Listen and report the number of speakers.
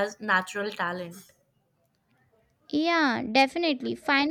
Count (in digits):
2